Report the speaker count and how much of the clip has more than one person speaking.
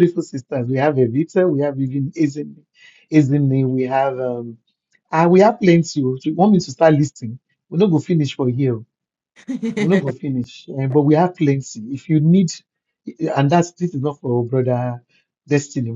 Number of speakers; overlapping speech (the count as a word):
one, no overlap